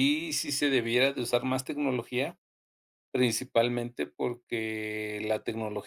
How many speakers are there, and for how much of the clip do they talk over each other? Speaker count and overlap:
1, no overlap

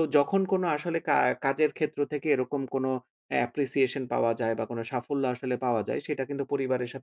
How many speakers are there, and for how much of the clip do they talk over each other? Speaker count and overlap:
1, no overlap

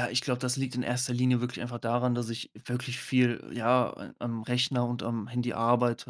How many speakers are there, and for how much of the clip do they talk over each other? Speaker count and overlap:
1, no overlap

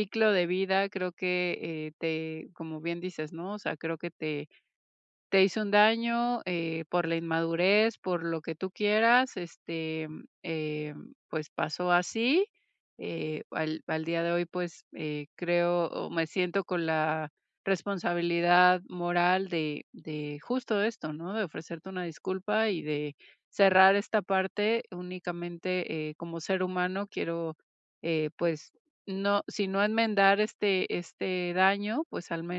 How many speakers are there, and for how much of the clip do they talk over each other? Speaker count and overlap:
1, no overlap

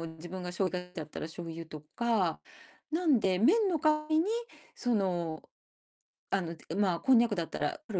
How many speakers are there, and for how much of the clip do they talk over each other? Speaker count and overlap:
1, no overlap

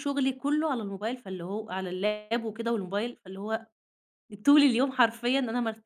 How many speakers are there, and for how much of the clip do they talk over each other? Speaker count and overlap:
1, no overlap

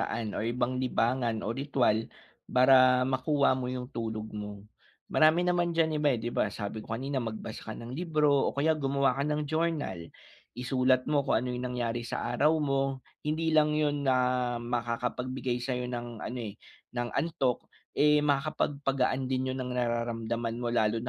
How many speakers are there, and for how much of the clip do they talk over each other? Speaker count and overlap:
1, no overlap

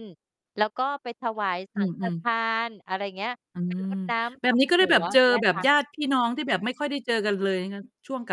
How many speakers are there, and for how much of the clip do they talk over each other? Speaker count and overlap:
2, about 23%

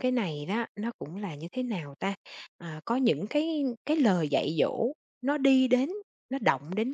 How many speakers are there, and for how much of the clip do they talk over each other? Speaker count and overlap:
1, no overlap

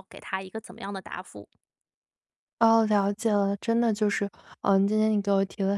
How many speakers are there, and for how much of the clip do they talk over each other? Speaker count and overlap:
2, no overlap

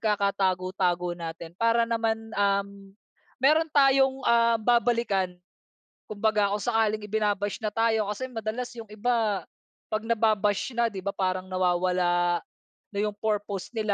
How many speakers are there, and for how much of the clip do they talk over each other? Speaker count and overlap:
1, no overlap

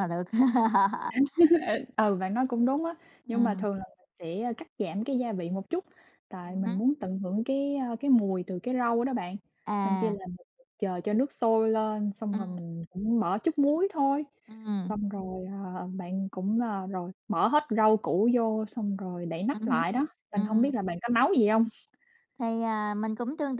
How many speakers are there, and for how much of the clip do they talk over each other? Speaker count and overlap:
2, about 7%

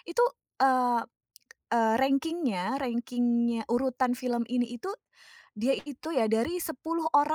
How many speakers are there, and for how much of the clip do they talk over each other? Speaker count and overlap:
1, no overlap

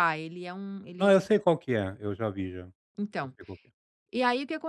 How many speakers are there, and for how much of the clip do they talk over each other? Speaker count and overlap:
2, about 7%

